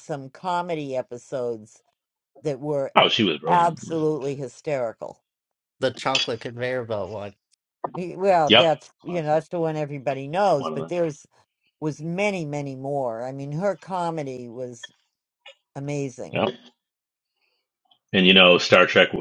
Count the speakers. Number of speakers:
three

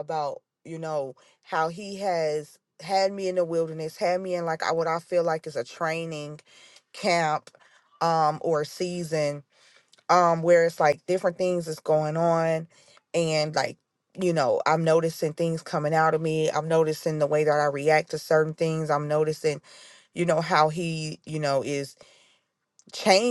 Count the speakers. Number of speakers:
one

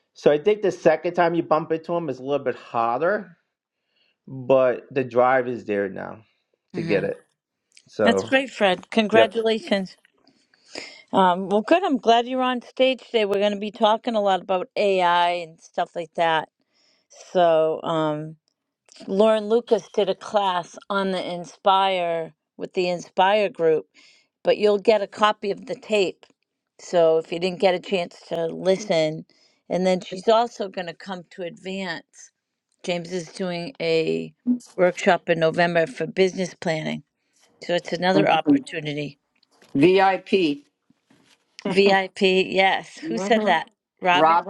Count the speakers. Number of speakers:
three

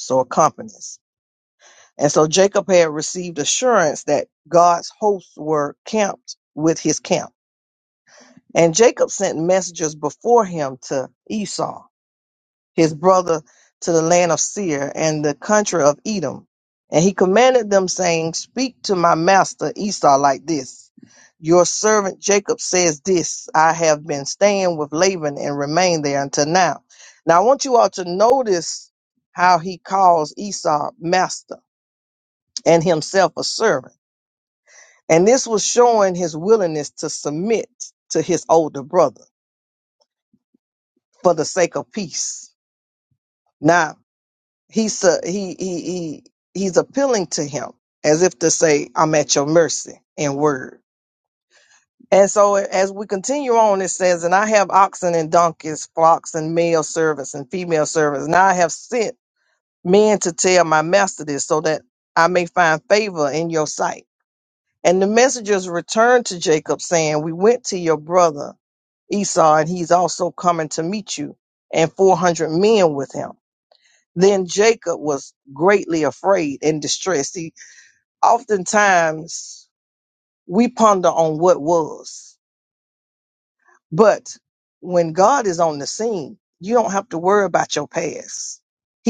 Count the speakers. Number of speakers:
one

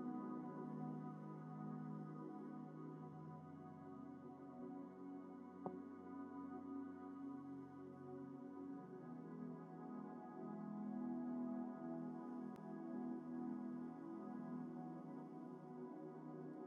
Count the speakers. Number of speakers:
zero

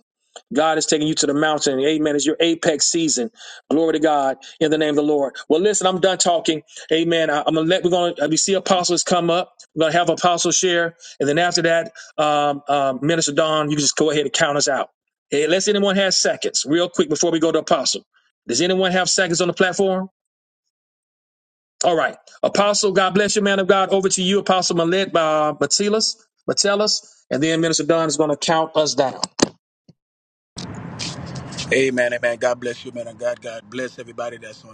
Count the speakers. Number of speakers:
two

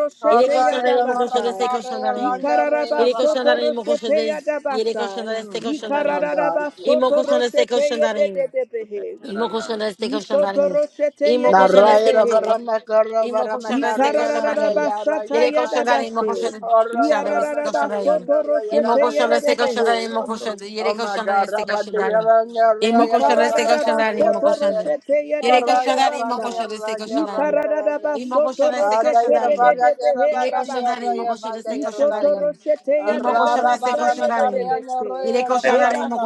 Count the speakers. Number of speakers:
three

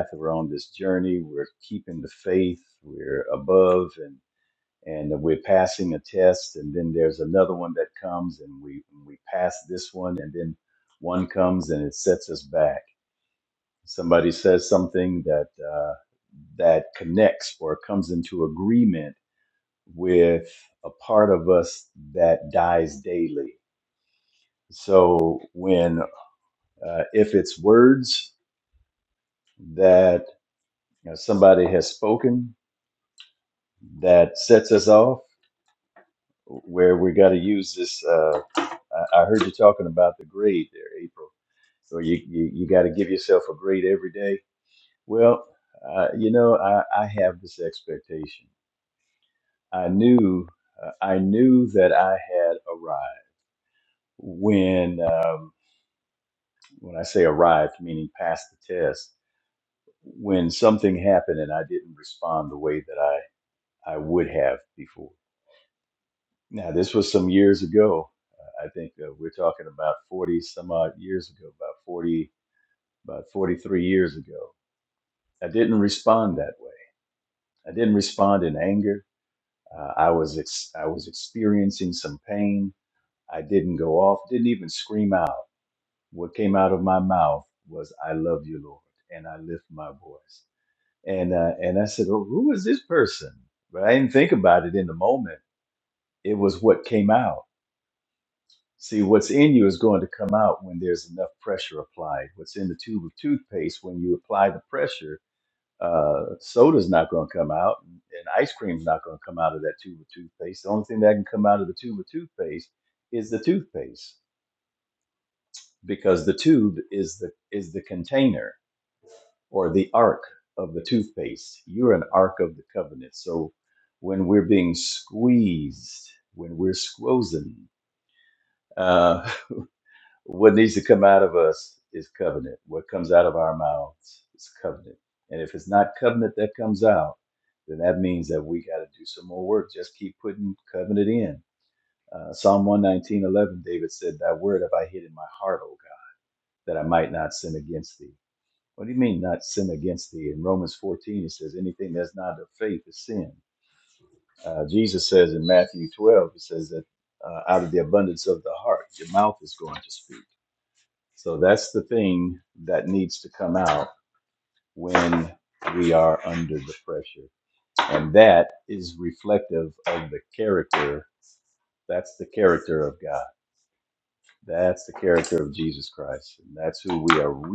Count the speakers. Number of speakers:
one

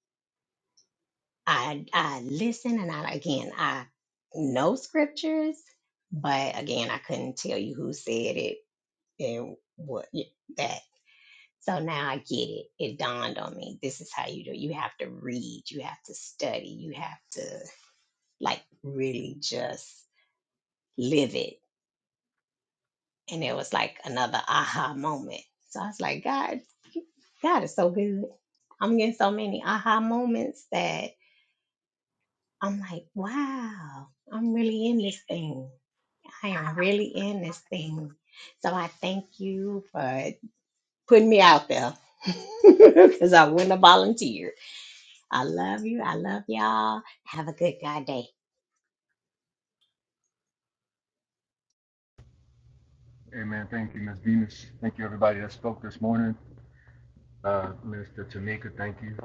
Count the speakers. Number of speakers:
two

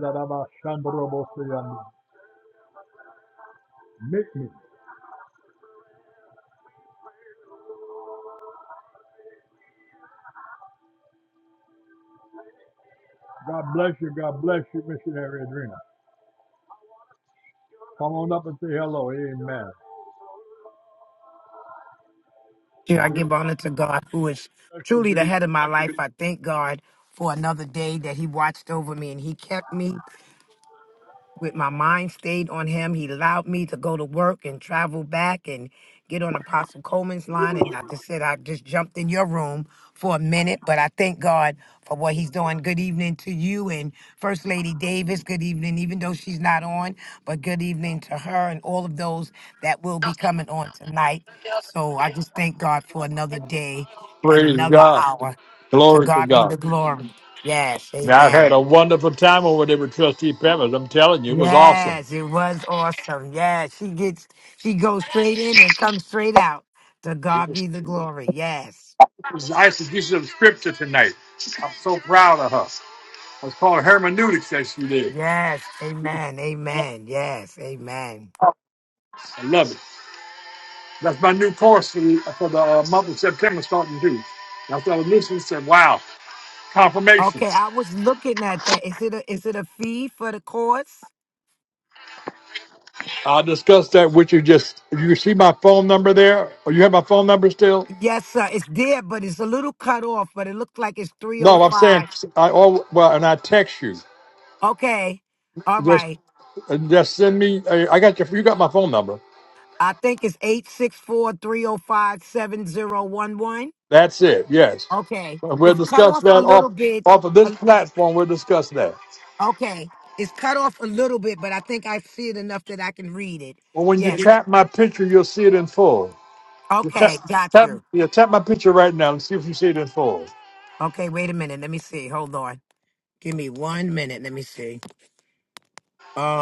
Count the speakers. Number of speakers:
two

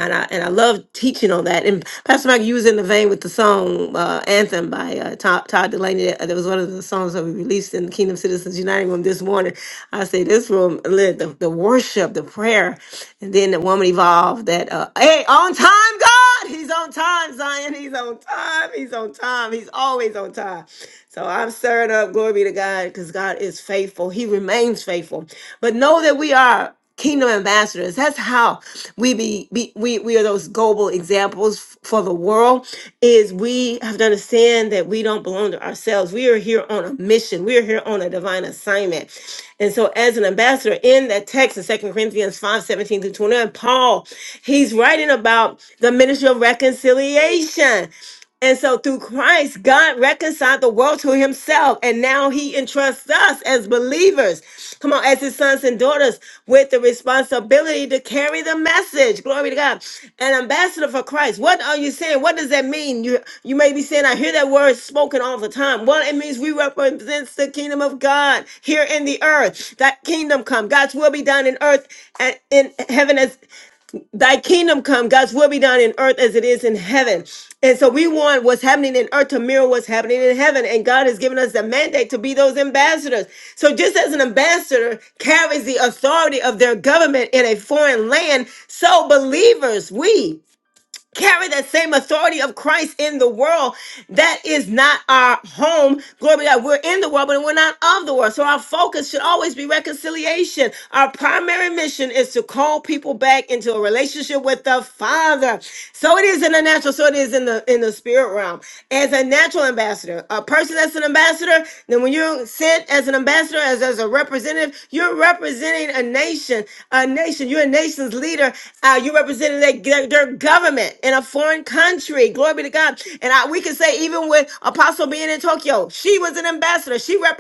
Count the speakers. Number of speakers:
one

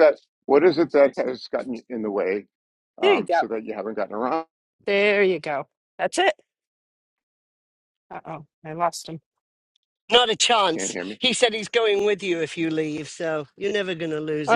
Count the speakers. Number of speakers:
three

